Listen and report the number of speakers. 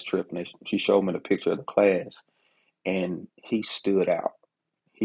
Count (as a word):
one